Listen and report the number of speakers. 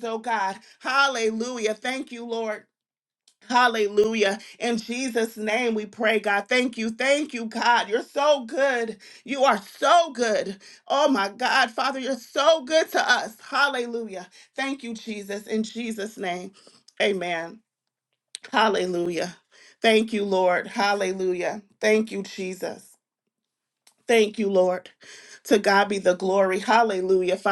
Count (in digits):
1